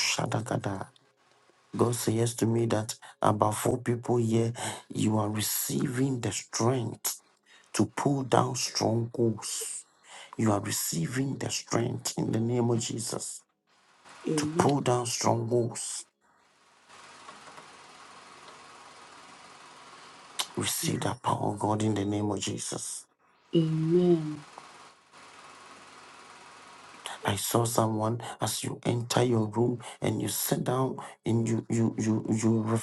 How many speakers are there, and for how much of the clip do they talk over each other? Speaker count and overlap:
two, about 1%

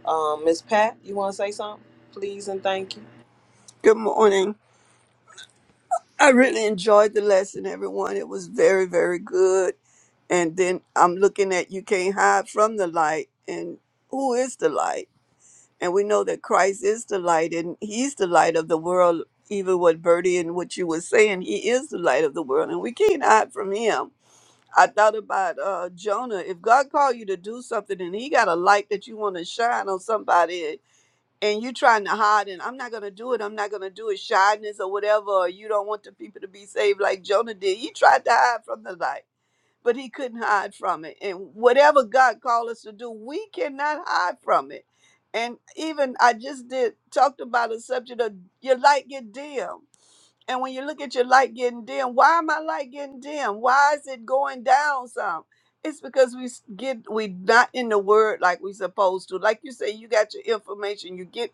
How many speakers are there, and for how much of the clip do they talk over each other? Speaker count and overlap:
two, no overlap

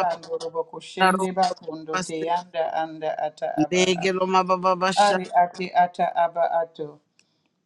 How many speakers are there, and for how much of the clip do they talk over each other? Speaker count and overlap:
two, about 14%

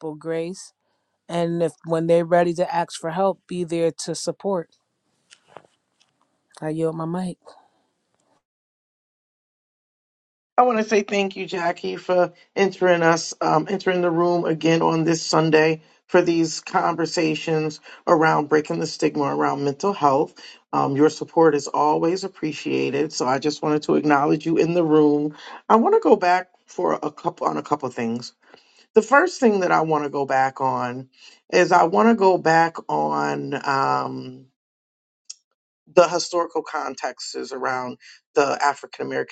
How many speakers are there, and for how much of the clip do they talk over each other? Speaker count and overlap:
two, no overlap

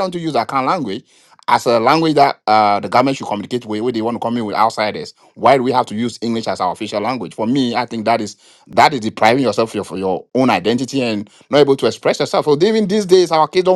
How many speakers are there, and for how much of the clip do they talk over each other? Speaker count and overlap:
one, no overlap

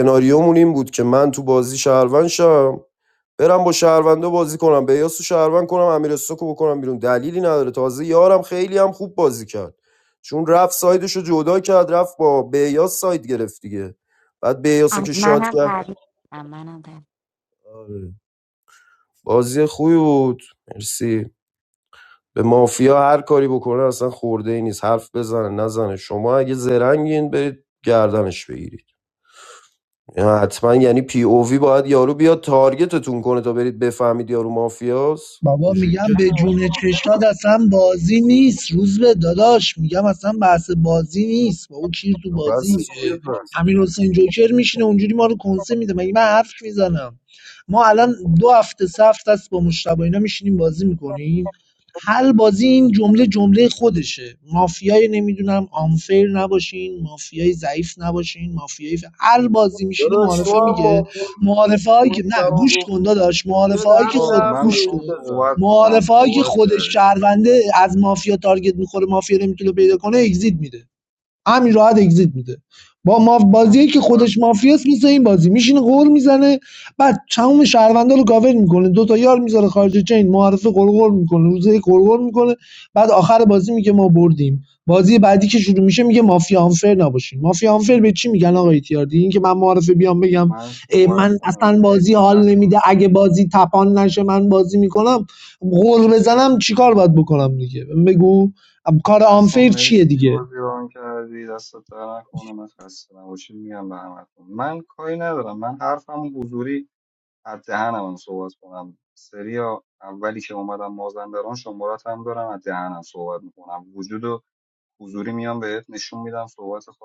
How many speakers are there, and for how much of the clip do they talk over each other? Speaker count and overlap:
four, about 10%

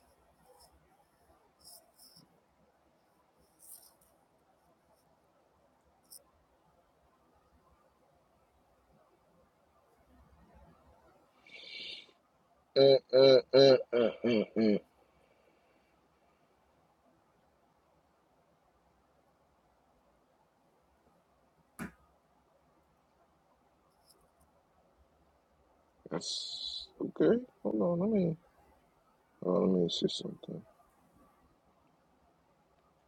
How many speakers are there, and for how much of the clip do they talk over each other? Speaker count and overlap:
one, no overlap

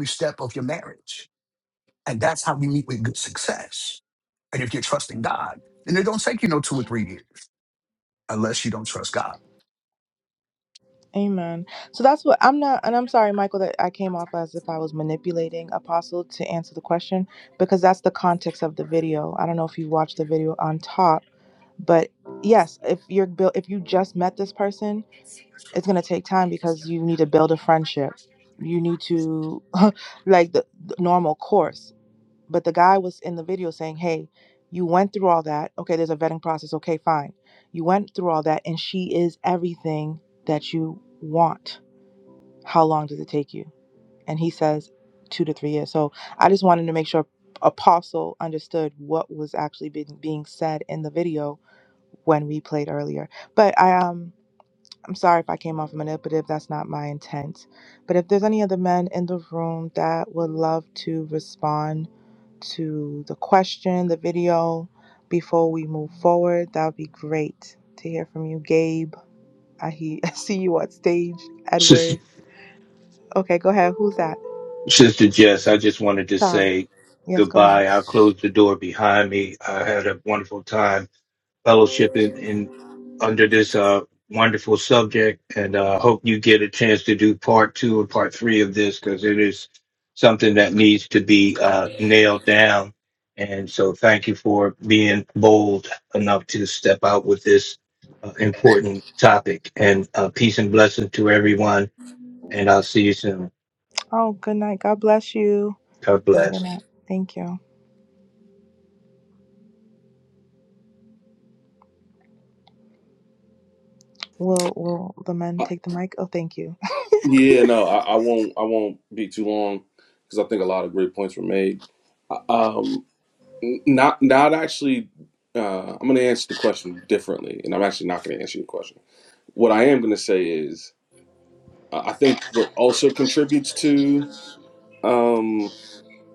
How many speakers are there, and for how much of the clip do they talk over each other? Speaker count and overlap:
four, about 1%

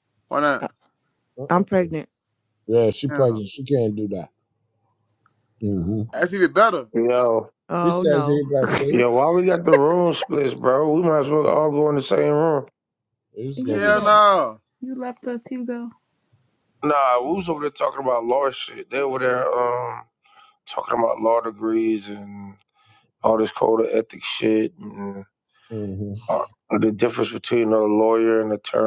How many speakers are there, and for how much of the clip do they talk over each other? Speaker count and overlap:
four, about 6%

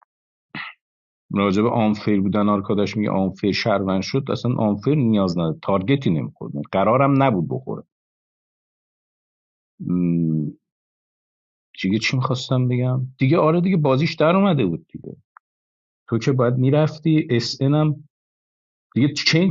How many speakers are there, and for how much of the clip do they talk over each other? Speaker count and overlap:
one, no overlap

